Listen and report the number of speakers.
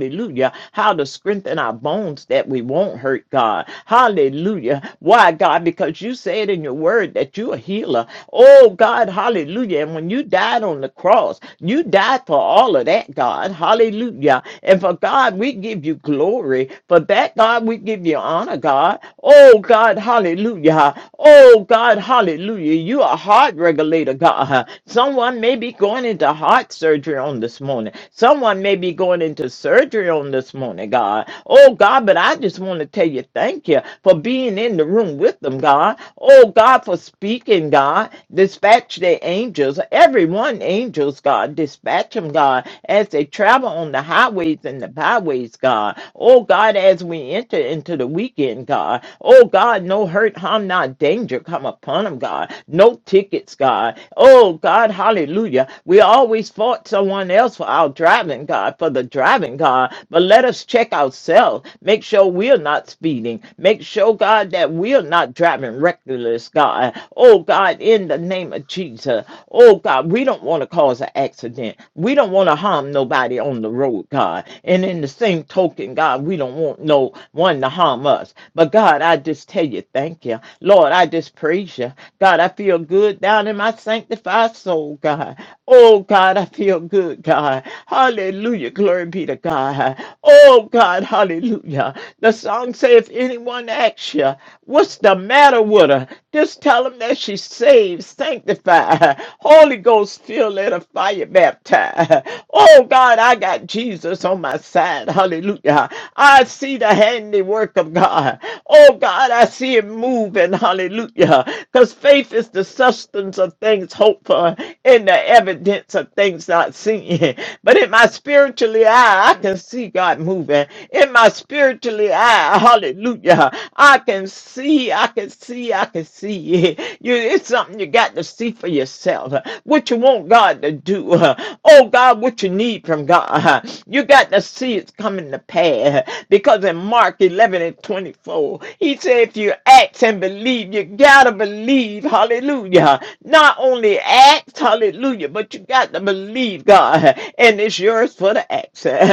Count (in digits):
1